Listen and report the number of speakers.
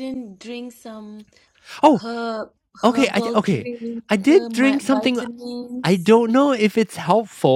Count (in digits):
2